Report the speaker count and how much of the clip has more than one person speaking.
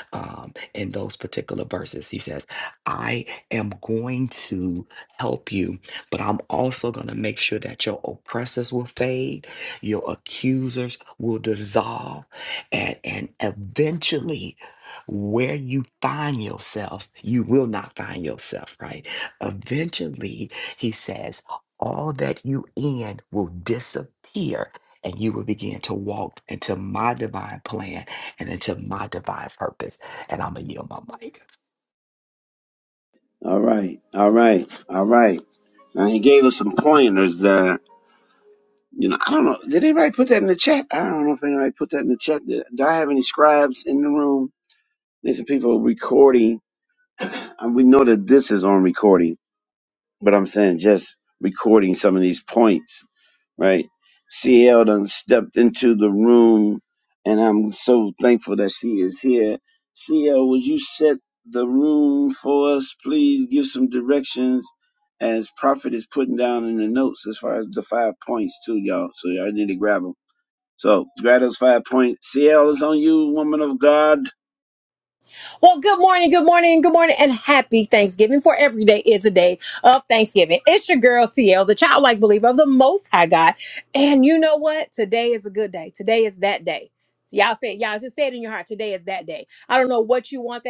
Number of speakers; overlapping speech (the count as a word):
three, no overlap